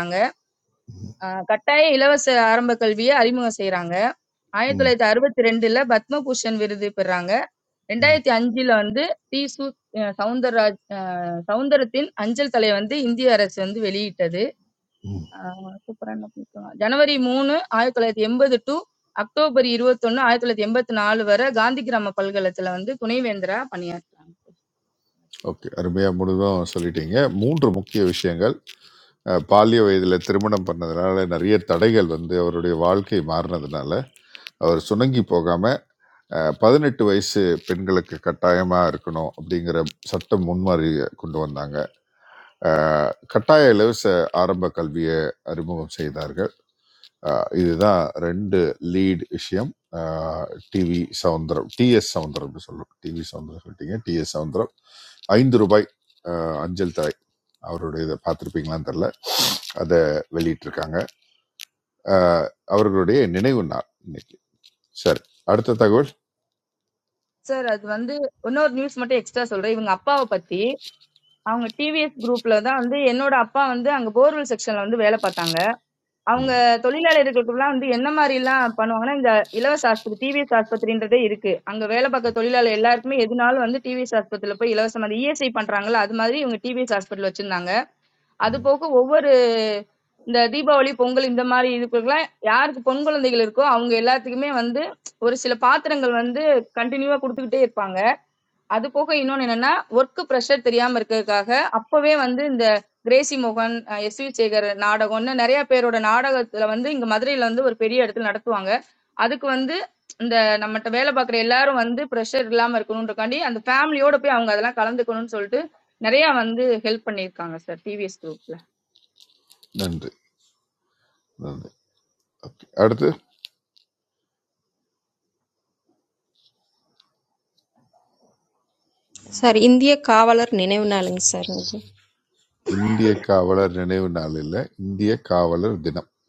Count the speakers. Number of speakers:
three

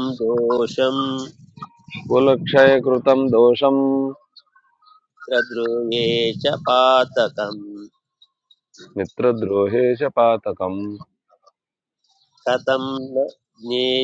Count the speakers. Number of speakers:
two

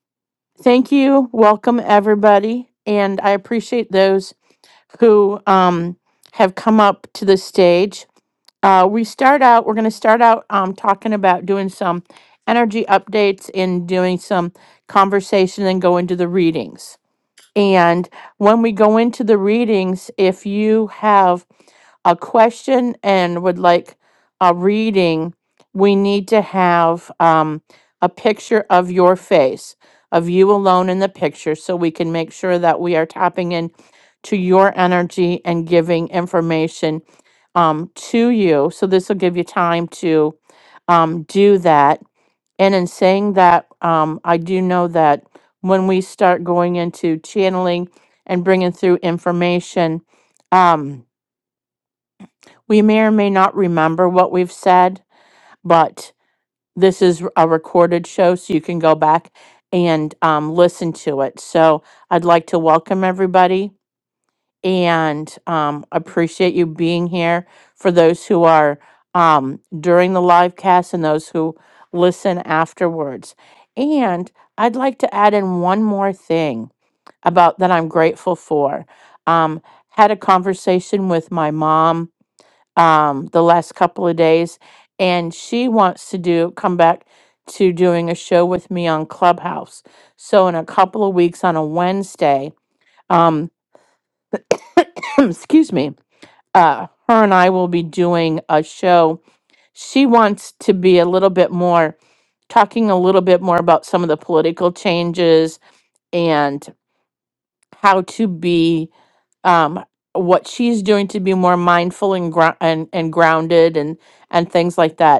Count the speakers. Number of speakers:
one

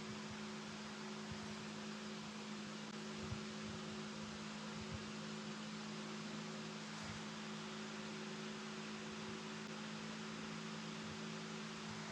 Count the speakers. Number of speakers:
zero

